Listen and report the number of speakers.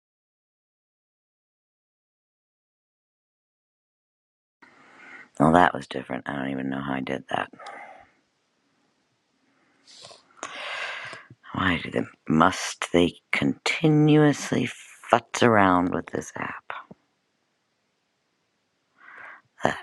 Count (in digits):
1